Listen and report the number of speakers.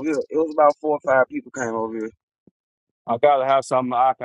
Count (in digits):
2